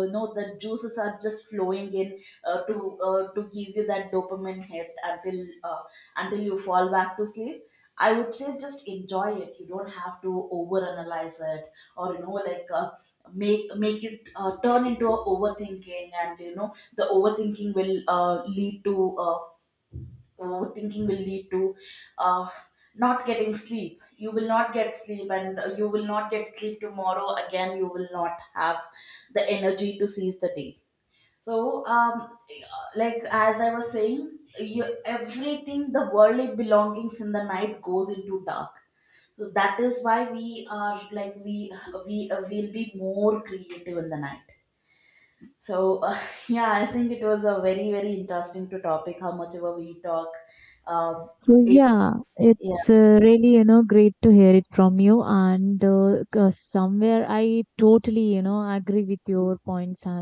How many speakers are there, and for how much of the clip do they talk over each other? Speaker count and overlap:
2, about 1%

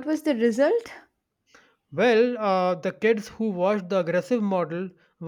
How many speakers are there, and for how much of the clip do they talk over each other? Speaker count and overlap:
2, no overlap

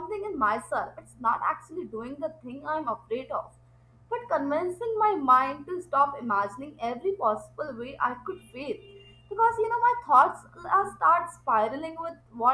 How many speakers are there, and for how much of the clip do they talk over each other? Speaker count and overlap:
1, no overlap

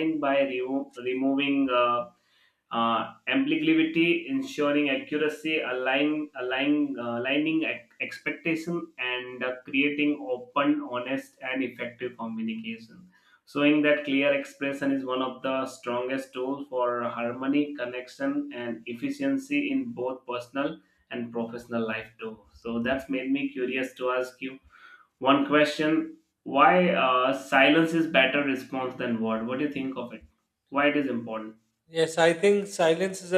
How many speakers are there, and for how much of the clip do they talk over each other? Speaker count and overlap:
2, no overlap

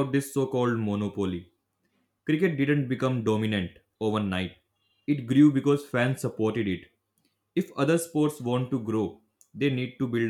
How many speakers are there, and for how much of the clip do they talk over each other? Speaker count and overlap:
1, no overlap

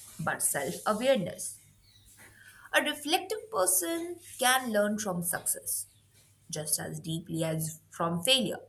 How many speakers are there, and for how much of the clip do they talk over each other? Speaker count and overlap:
1, no overlap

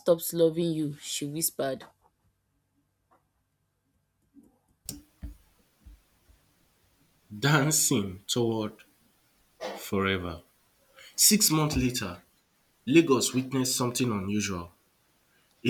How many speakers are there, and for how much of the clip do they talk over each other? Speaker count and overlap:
2, no overlap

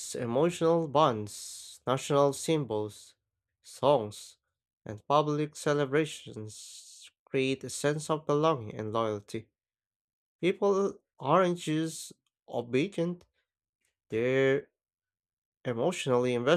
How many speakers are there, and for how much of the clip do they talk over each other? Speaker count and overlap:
1, no overlap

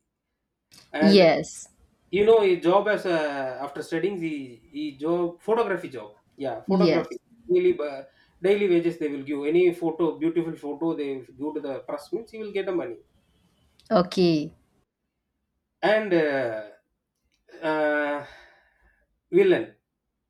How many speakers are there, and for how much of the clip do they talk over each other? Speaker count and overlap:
2, about 4%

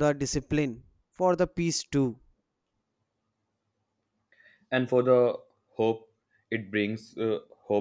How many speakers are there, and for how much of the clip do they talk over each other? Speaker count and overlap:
2, no overlap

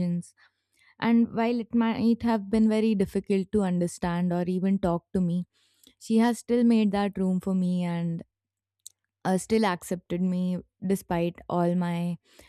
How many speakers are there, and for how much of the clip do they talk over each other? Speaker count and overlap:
1, no overlap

